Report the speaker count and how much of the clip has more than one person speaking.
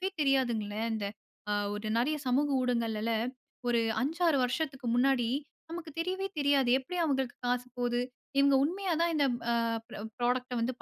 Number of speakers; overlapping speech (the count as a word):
one, no overlap